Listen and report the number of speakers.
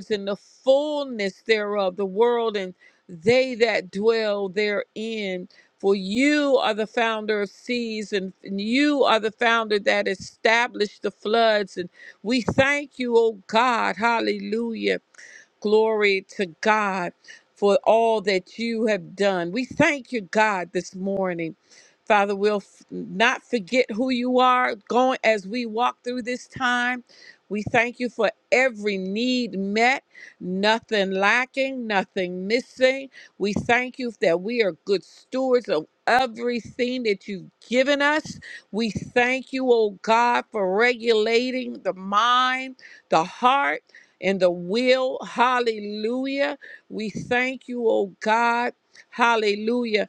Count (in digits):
1